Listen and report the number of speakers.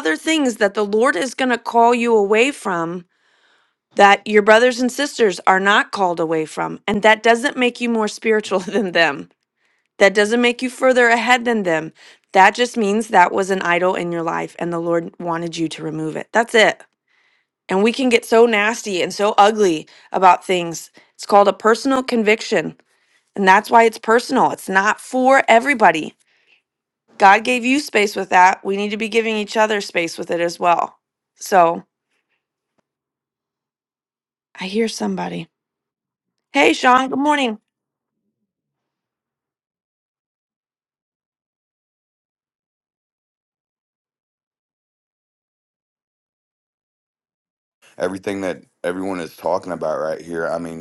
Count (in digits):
2